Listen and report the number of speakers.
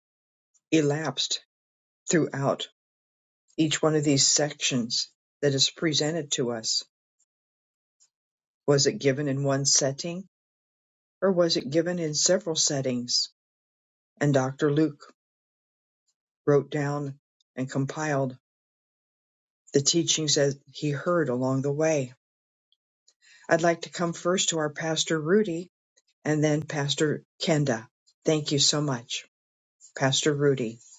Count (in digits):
1